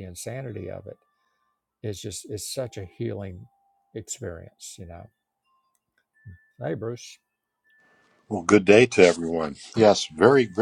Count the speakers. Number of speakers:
two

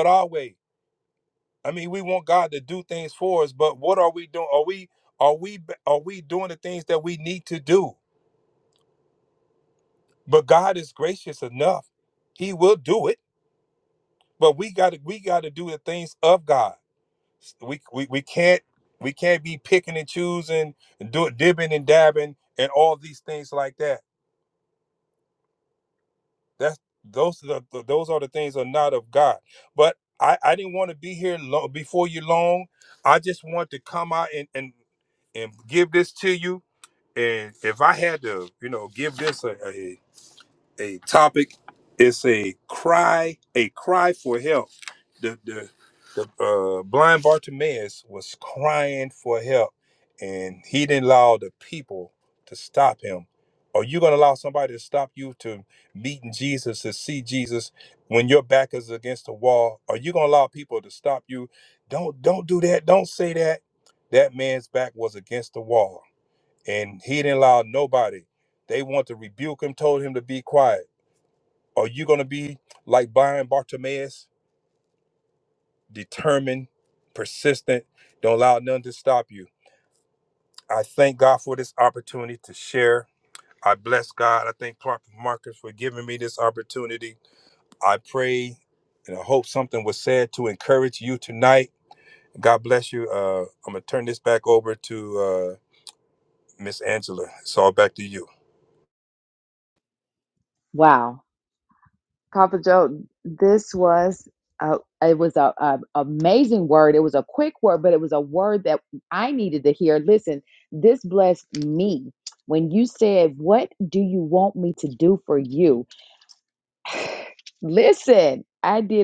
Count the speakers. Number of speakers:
two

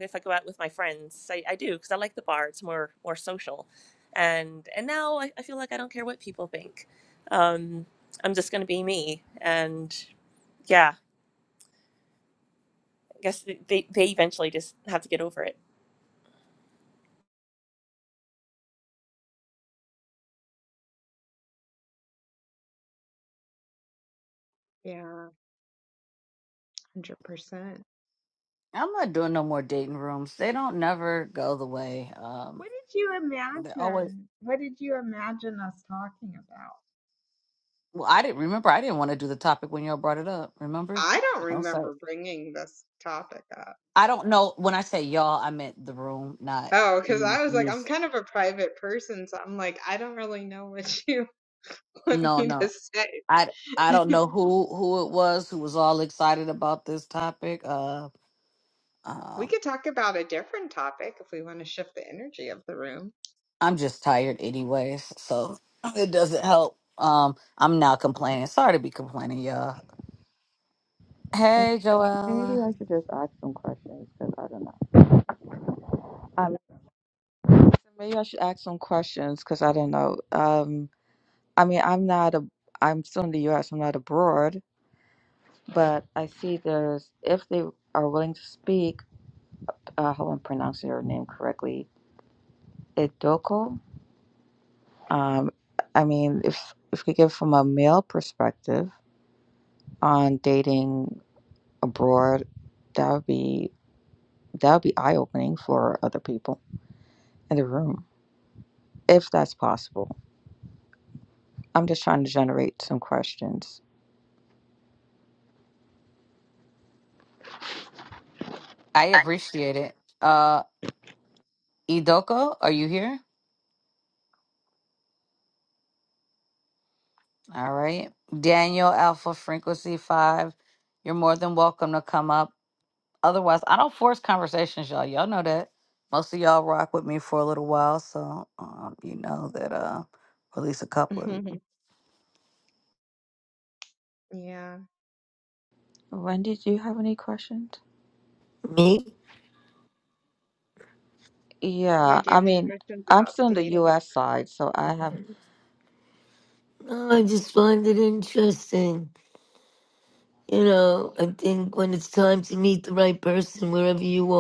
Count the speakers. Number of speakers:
five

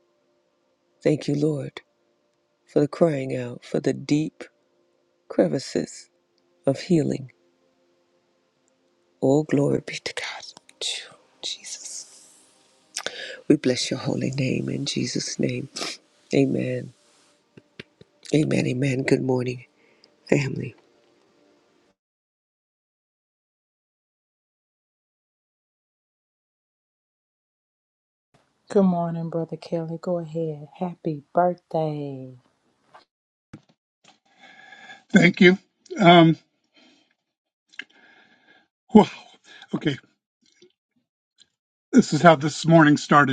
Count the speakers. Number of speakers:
three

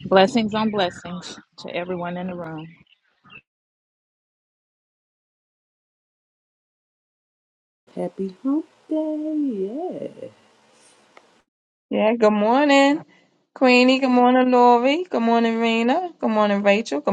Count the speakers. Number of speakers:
three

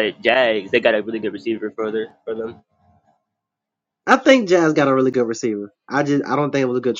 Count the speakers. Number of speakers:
two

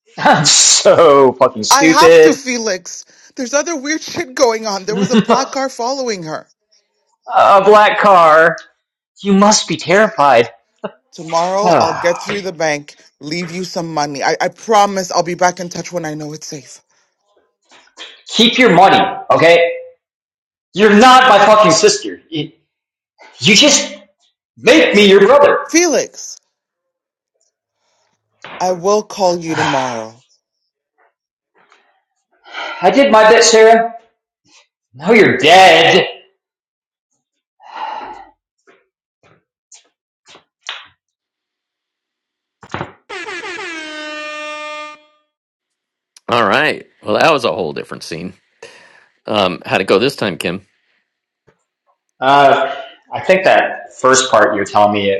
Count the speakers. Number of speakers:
three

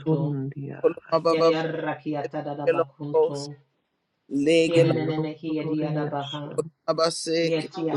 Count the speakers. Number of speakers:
three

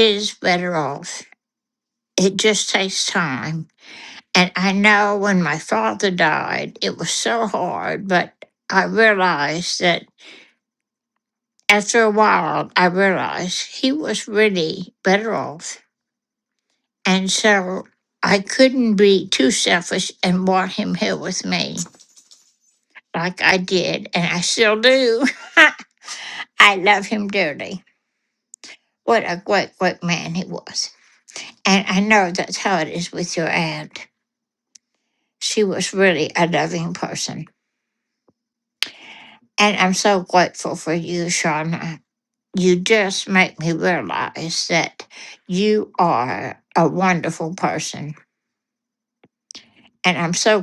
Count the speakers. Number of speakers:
one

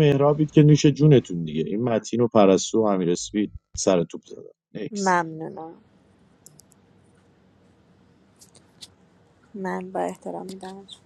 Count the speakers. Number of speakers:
two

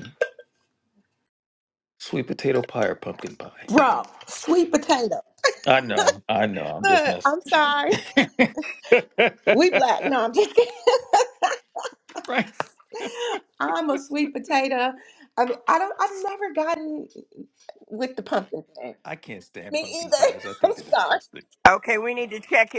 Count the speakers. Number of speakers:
three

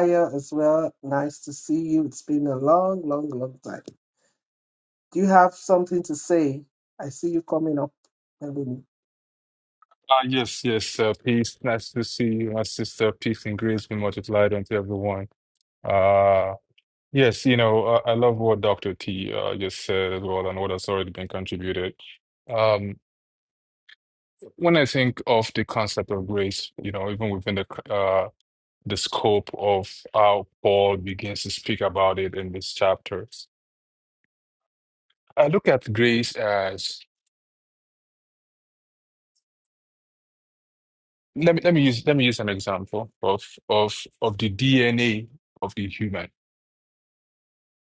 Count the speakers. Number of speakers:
two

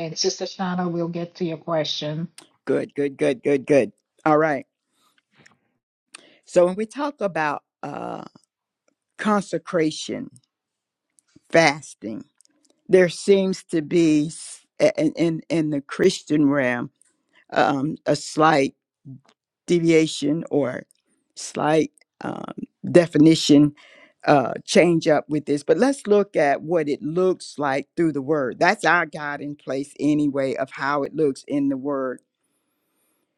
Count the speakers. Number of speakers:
two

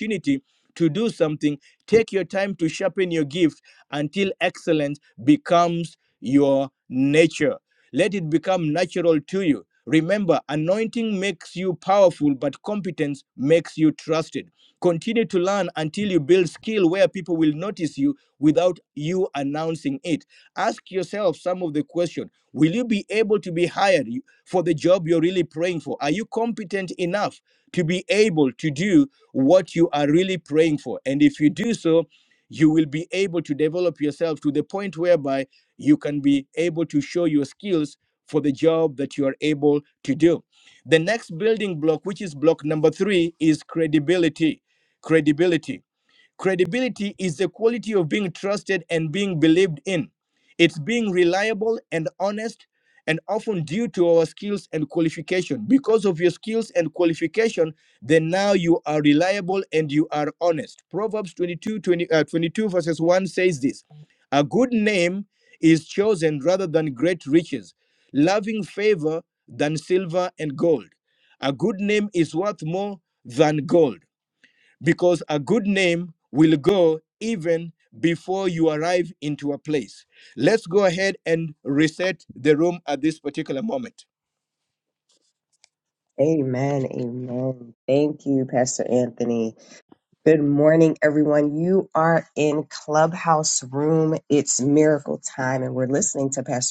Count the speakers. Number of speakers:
two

